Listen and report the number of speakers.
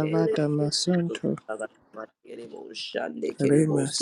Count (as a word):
two